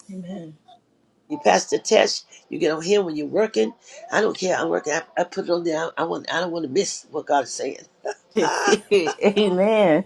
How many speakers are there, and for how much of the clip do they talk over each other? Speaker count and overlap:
2, no overlap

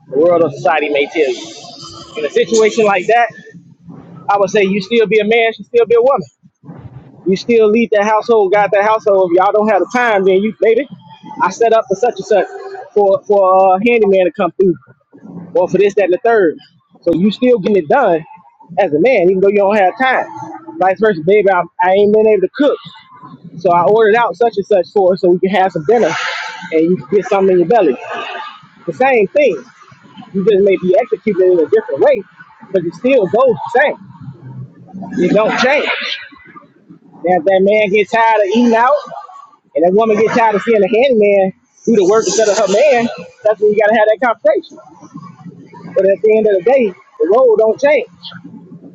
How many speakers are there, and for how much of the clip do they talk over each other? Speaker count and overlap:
1, no overlap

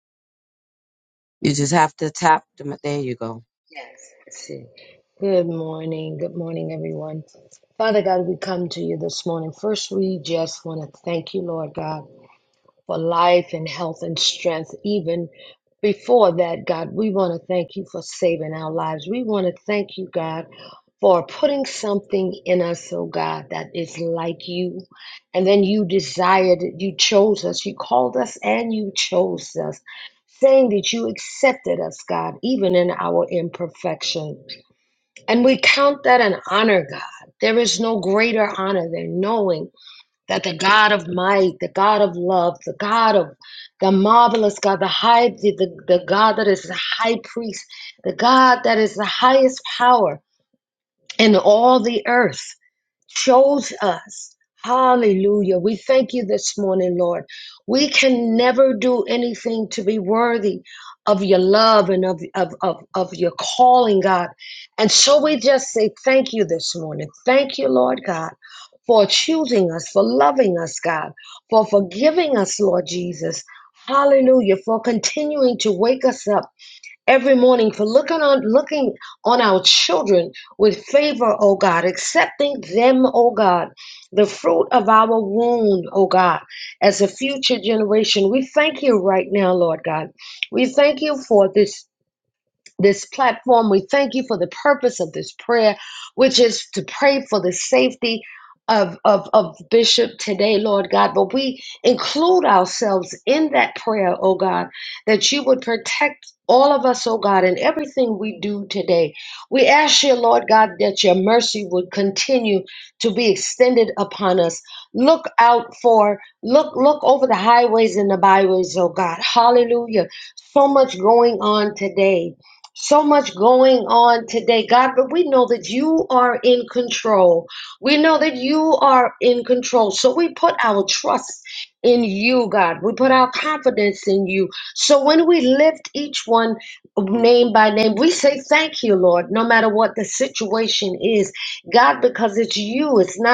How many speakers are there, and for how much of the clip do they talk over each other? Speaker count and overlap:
2, no overlap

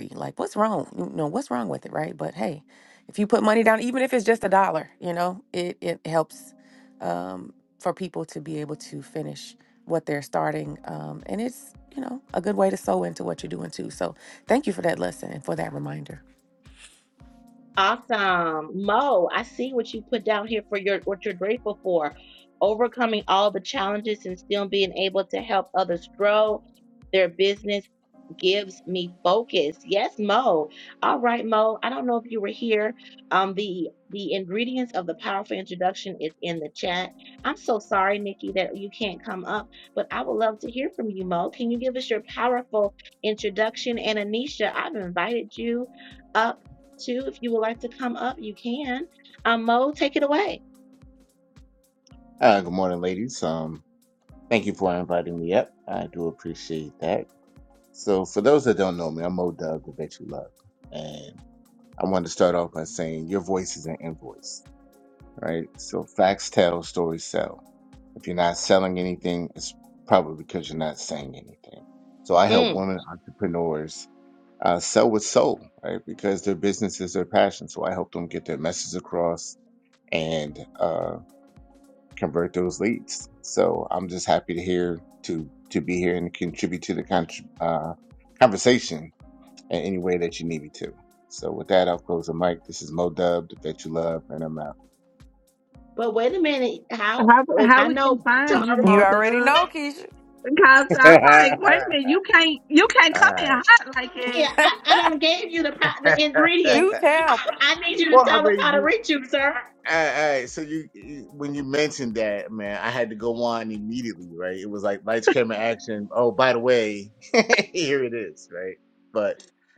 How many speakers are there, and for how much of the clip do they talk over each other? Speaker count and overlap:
4, about 4%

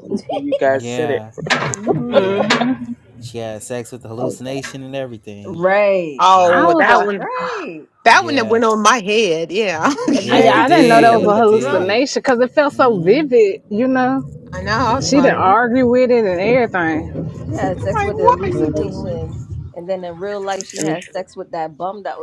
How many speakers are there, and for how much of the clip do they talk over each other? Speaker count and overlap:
5, about 33%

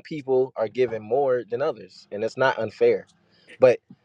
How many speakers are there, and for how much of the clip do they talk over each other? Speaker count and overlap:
1, no overlap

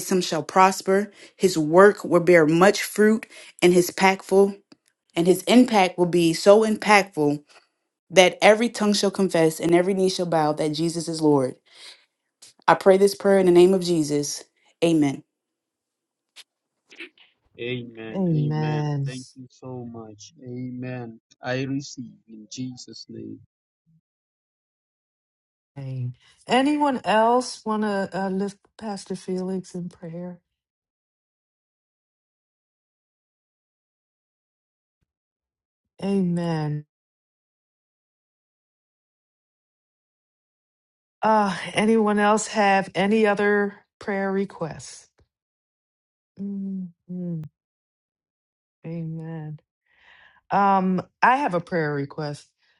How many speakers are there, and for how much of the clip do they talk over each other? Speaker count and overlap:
3, about 2%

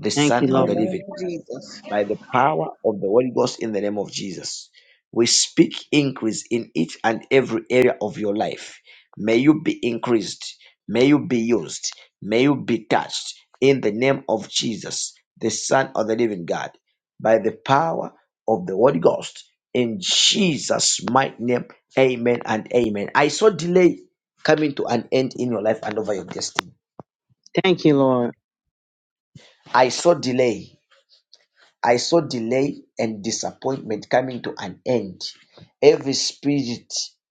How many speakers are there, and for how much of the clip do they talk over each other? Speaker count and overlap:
3, about 2%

